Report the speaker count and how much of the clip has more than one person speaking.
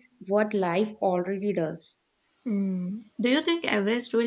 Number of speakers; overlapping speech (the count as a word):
two, no overlap